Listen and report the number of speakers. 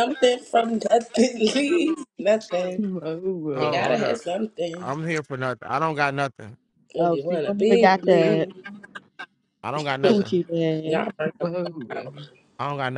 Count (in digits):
4